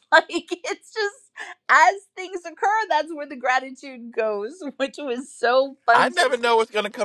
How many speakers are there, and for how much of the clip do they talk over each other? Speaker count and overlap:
2, about 5%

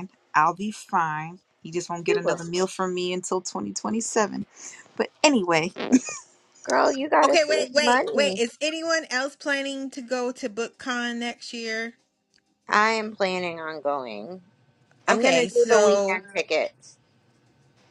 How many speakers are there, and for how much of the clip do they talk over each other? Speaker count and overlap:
3, about 14%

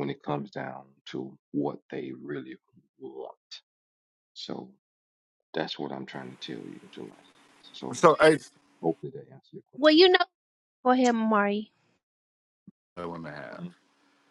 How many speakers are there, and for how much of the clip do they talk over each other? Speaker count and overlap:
3, about 1%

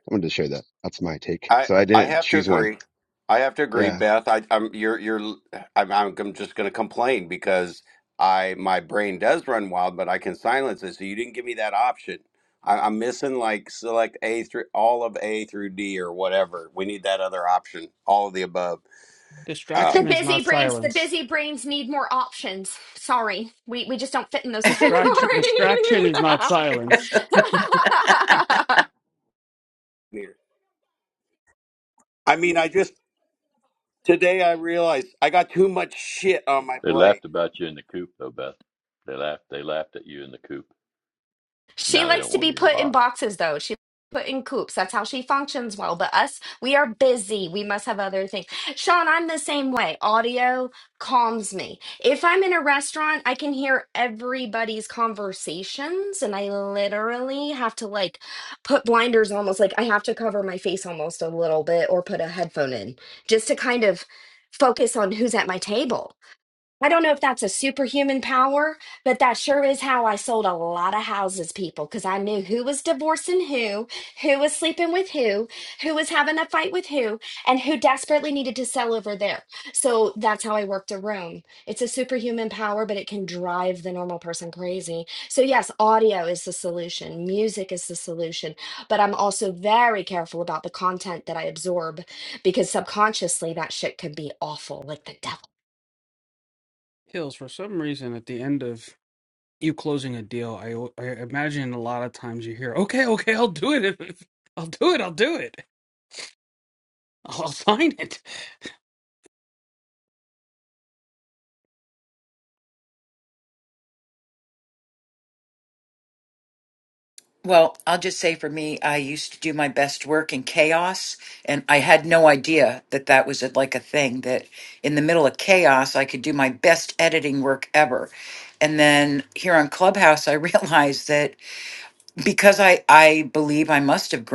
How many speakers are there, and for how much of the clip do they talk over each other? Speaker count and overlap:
6, about 3%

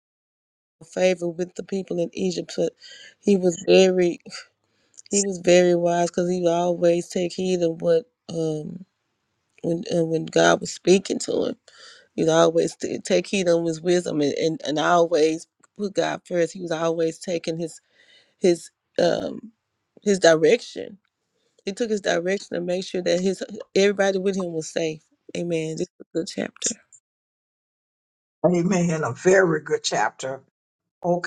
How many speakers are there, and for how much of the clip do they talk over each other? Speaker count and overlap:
2, no overlap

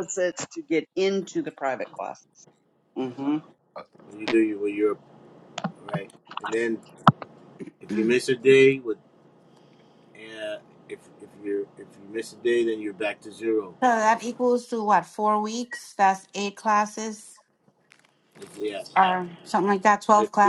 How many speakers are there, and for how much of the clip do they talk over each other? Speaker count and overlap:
3, about 2%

